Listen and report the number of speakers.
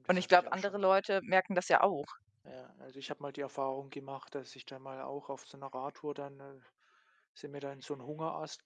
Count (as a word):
two